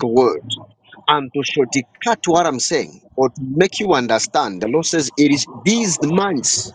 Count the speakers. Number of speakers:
one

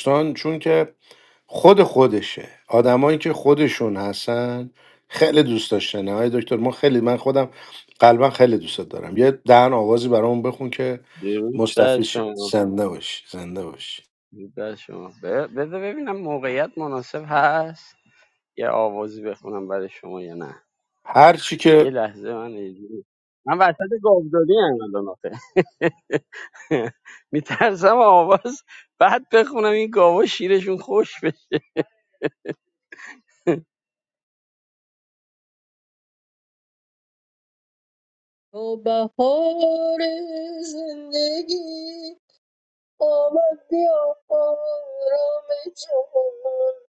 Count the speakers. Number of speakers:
three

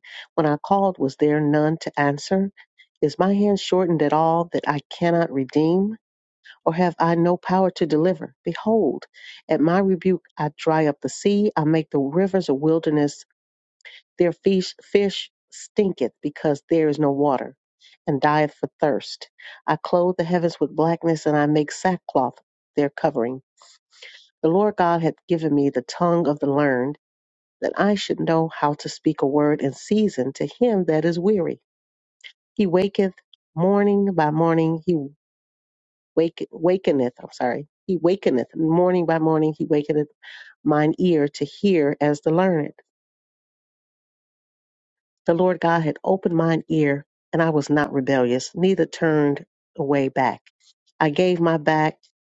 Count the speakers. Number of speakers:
one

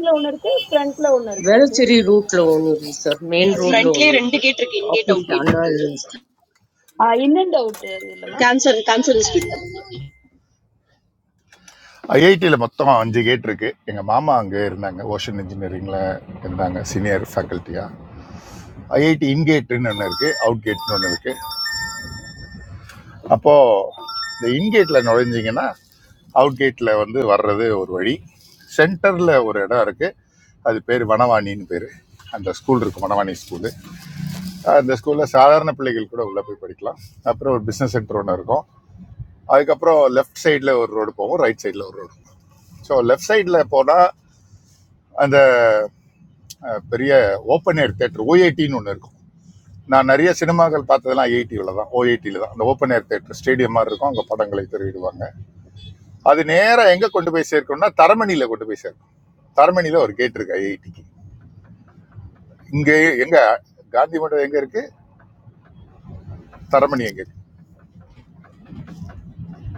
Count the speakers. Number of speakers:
four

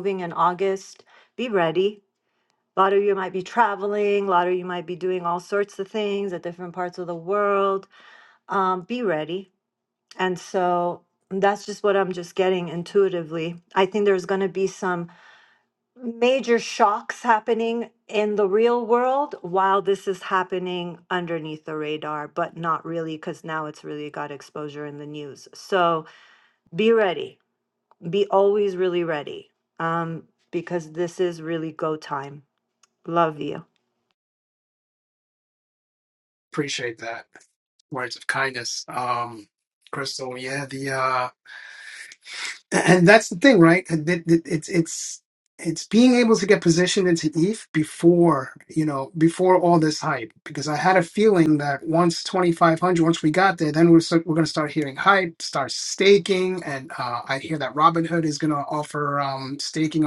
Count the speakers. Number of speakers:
two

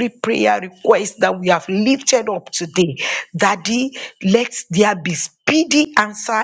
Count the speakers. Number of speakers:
one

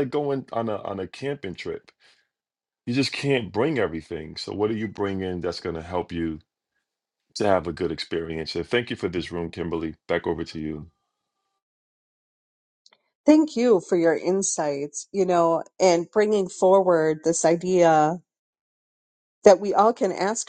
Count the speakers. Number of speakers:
two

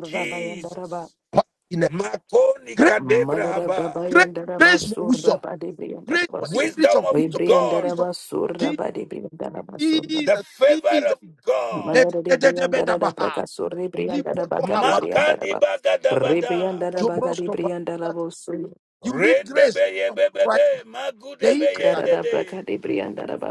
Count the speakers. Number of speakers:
three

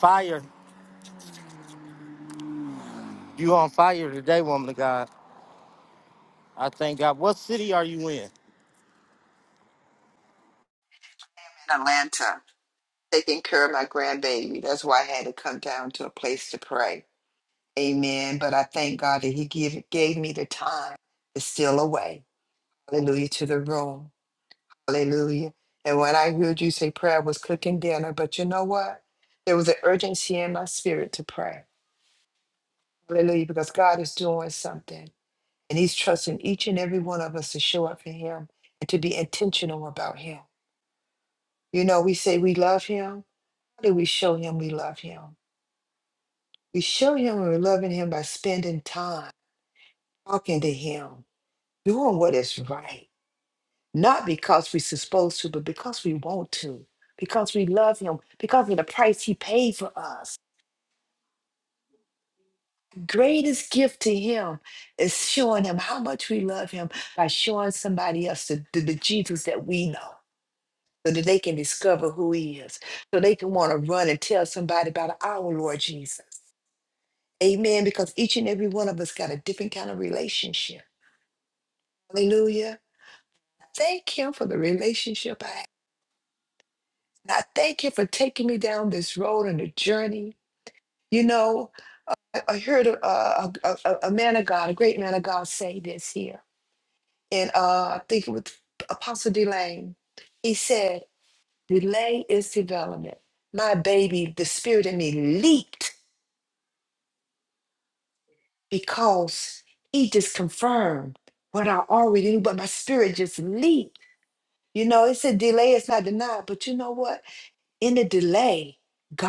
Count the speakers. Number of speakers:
two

